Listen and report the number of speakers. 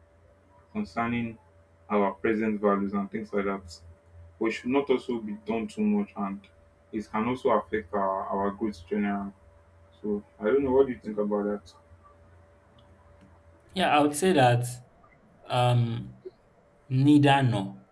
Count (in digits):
2